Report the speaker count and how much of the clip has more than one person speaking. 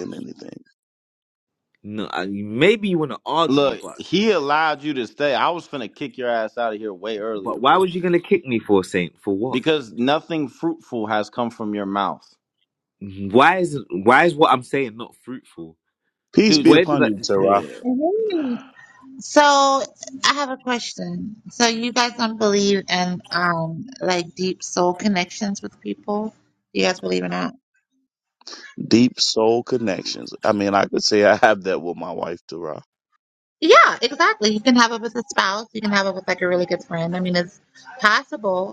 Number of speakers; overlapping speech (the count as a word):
four, about 5%